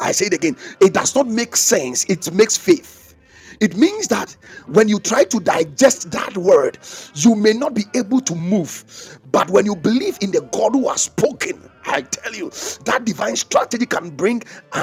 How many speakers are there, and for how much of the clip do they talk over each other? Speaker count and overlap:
1, no overlap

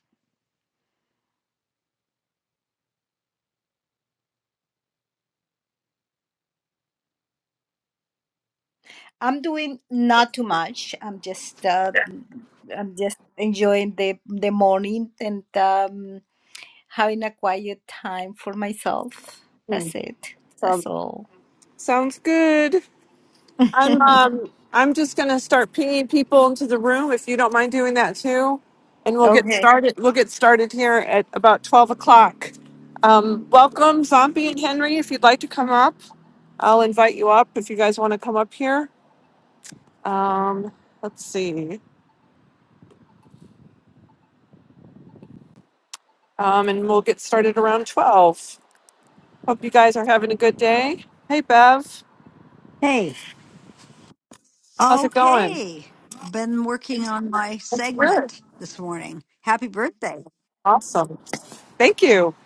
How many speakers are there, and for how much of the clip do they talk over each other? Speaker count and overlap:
3, about 3%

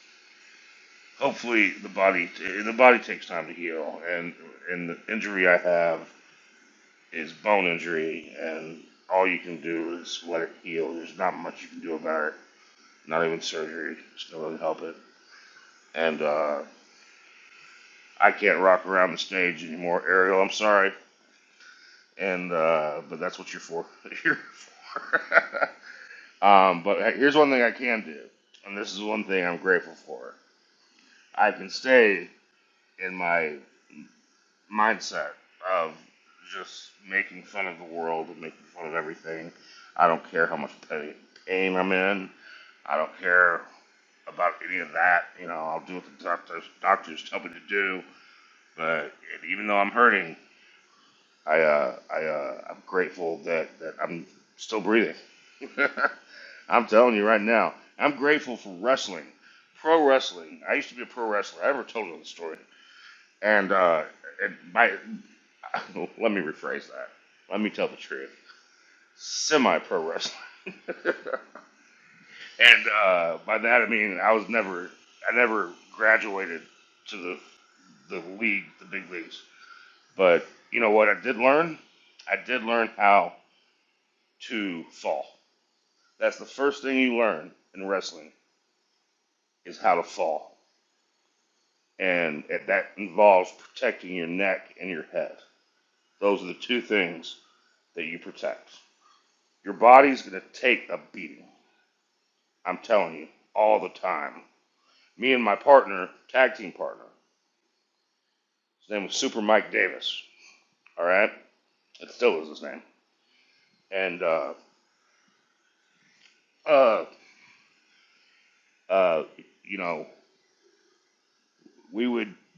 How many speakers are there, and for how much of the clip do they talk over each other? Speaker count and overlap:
1, no overlap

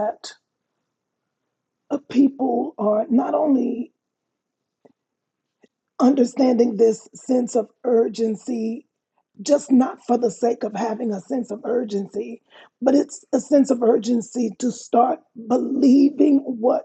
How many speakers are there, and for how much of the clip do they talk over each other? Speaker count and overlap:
1, no overlap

